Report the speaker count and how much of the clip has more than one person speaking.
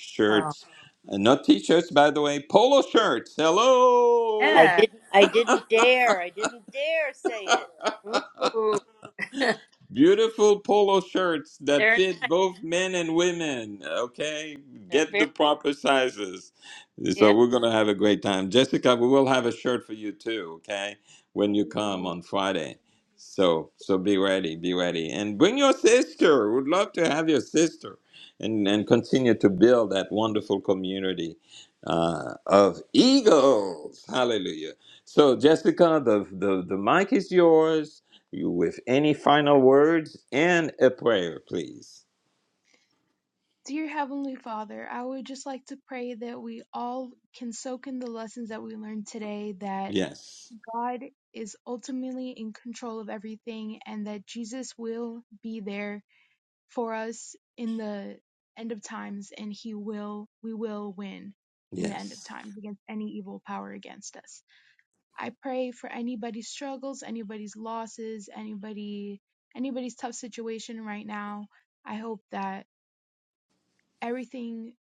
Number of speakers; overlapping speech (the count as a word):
four, about 3%